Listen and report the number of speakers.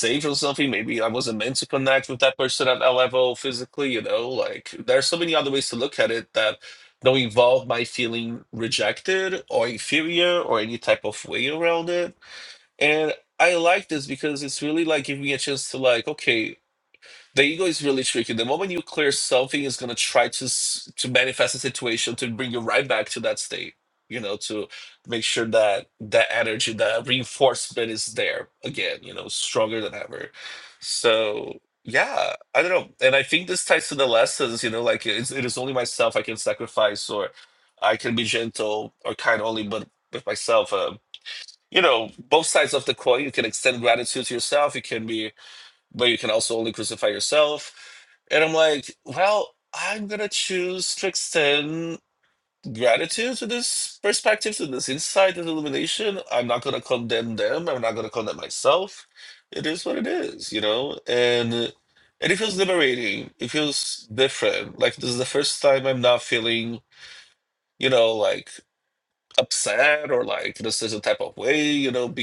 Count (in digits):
1